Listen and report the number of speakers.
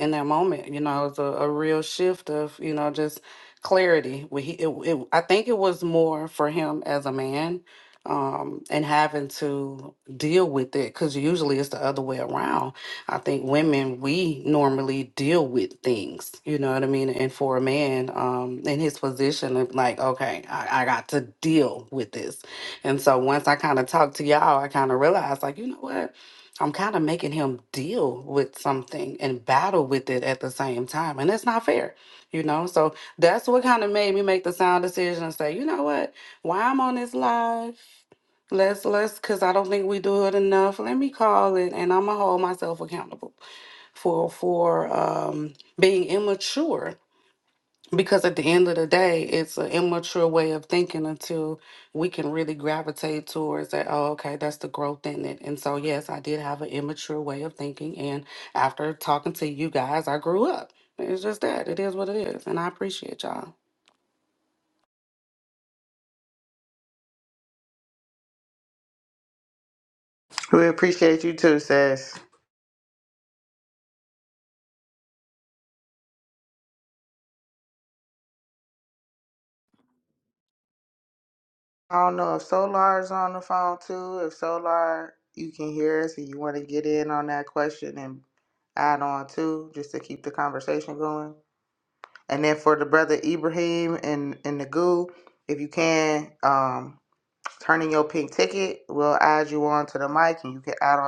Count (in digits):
2